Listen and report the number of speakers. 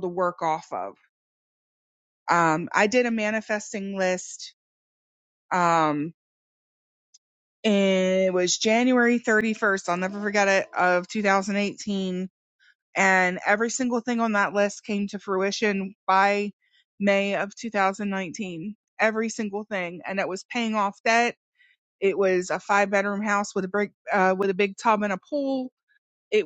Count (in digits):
1